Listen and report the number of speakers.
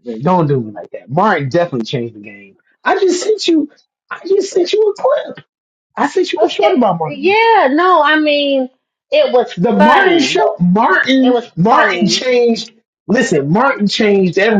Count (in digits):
2